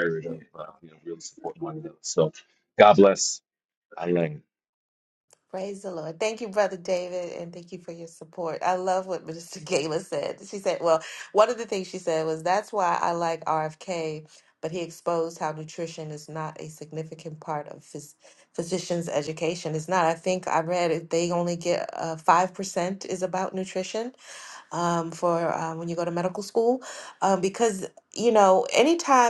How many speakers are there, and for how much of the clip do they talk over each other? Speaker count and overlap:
two, no overlap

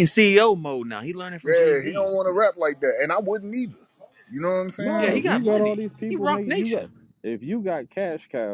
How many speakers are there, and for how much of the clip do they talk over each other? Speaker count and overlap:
three, about 27%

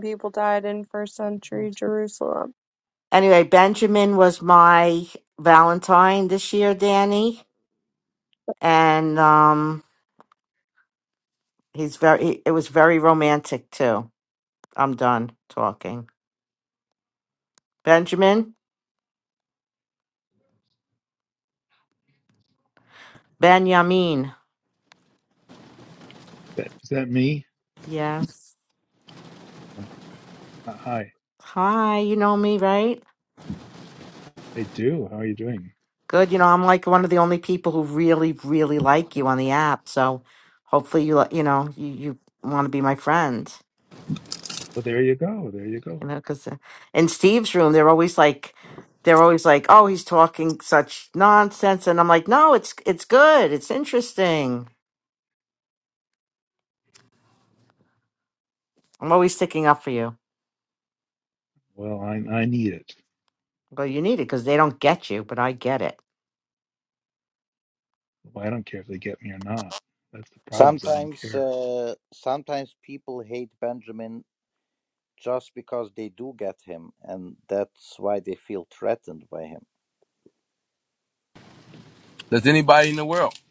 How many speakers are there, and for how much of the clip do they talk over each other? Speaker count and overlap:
five, about 1%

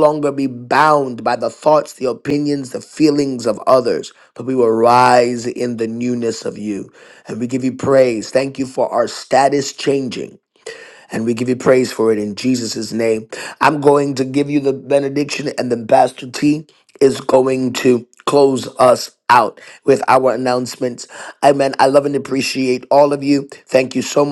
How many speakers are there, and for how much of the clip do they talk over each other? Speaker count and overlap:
one, no overlap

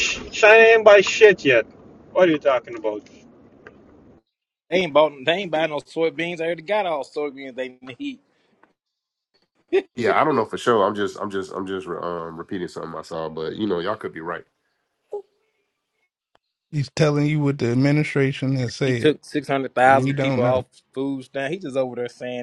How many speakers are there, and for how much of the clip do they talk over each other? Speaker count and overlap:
four, about 5%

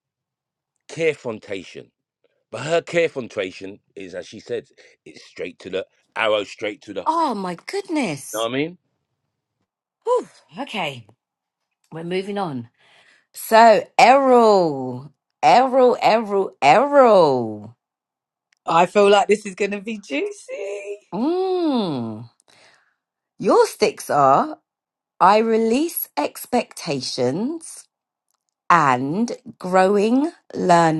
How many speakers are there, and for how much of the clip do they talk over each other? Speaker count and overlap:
three, no overlap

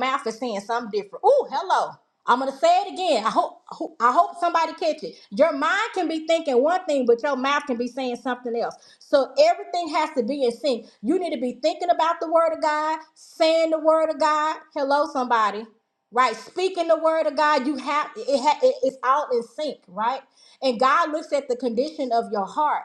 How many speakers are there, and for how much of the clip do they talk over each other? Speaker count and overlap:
one, no overlap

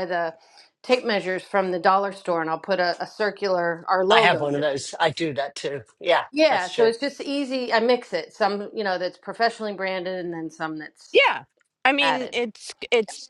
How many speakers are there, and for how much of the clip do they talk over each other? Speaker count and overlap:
three, about 10%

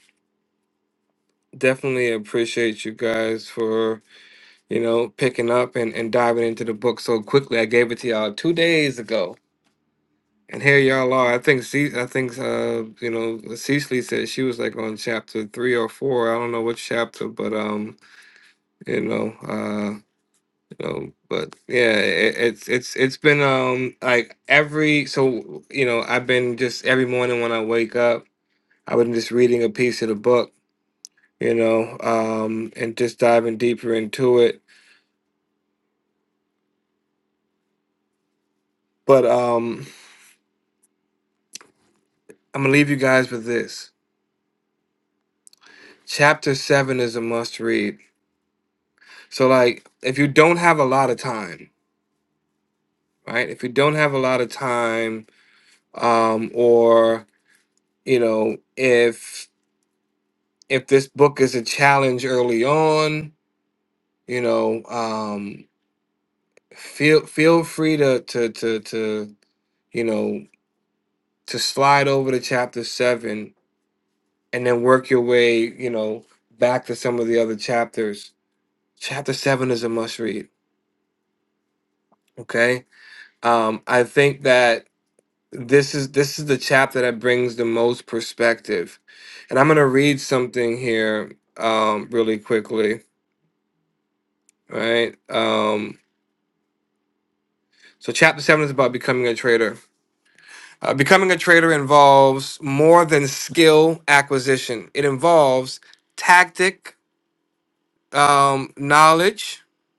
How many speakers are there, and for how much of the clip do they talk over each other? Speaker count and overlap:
one, no overlap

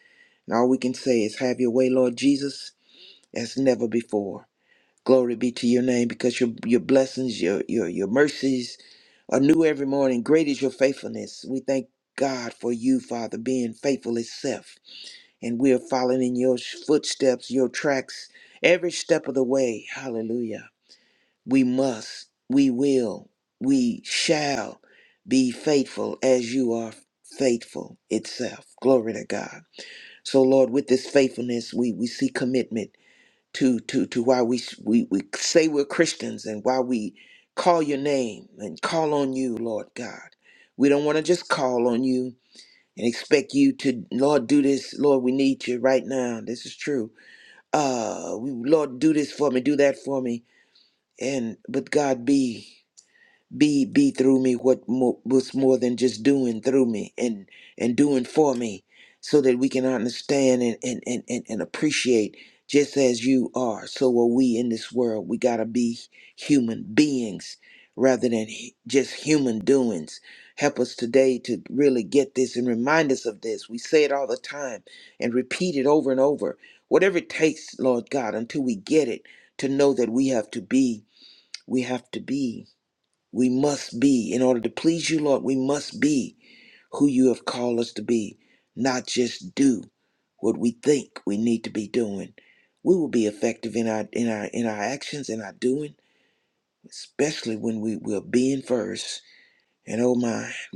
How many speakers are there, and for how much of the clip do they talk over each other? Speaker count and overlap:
one, no overlap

